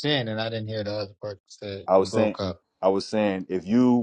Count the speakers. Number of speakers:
2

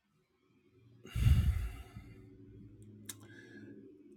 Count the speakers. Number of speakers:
0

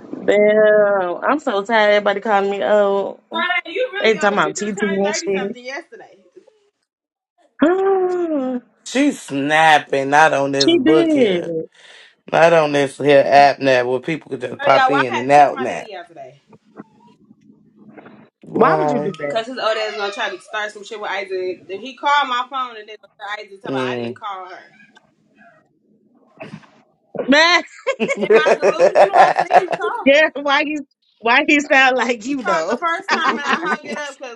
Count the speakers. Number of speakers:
3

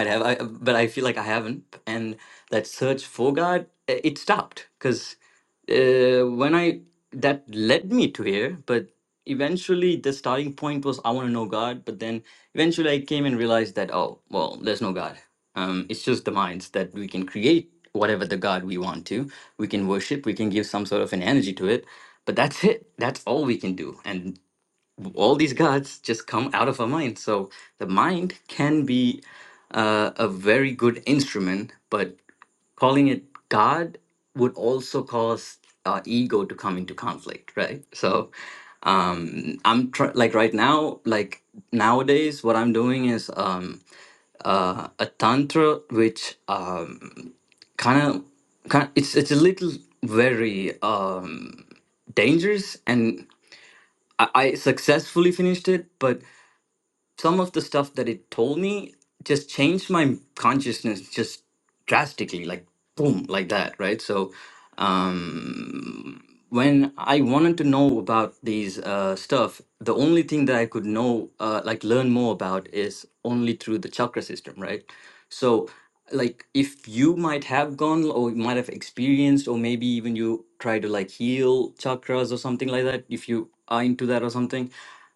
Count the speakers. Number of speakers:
1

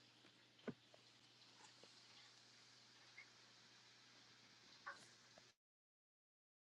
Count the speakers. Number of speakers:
0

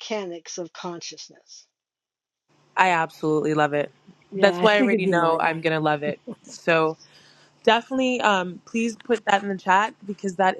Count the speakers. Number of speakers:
2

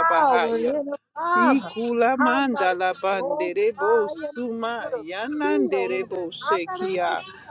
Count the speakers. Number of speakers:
2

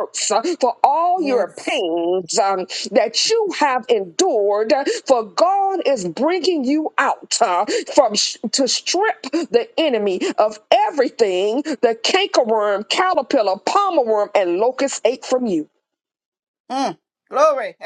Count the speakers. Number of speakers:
2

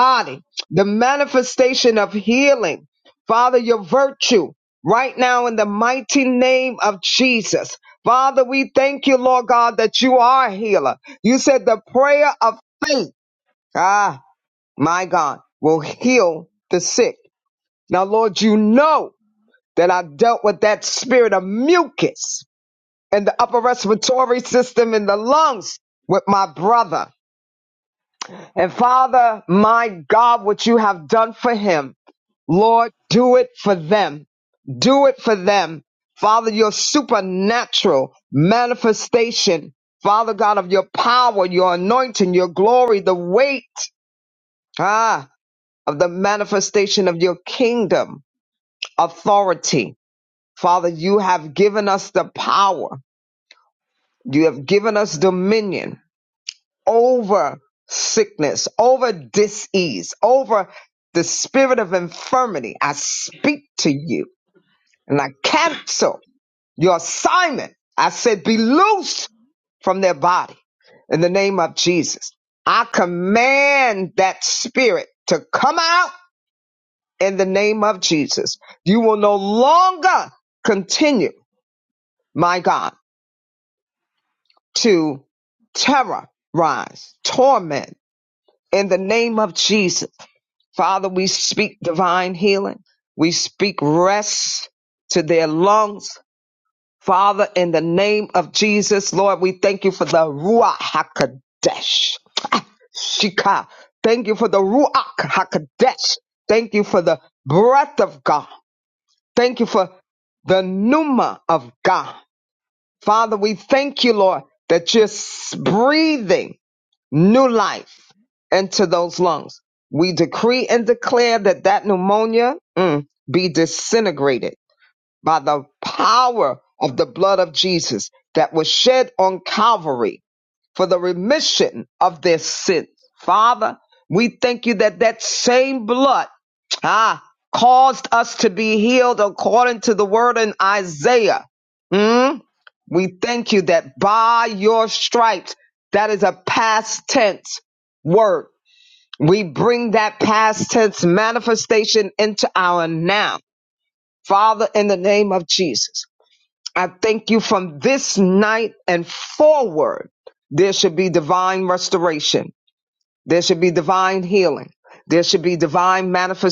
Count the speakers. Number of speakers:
1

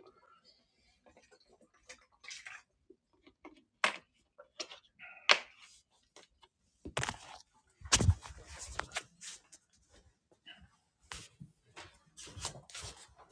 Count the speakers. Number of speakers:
0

